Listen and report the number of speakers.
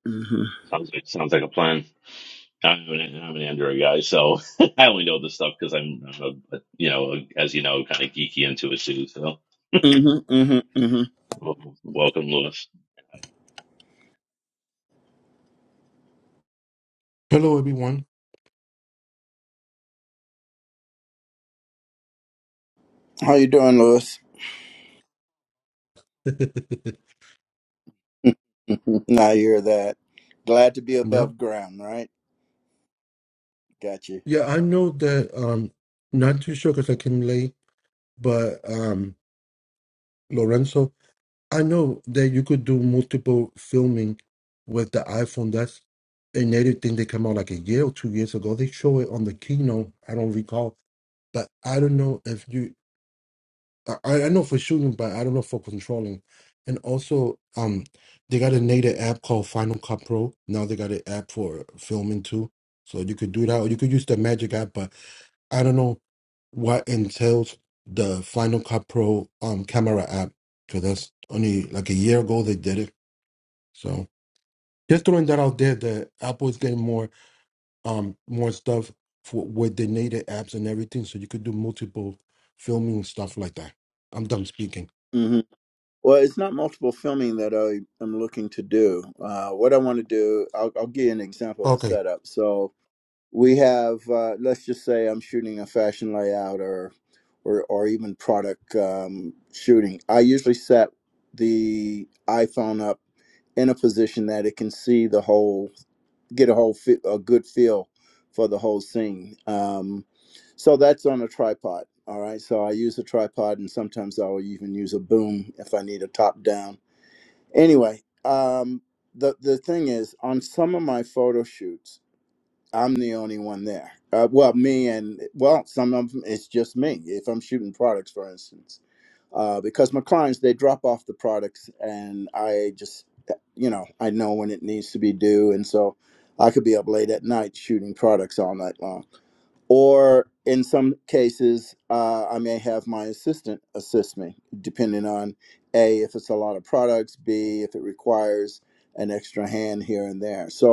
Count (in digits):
3